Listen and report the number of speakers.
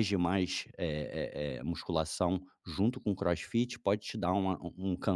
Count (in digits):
1